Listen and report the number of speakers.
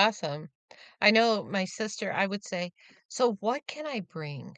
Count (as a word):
one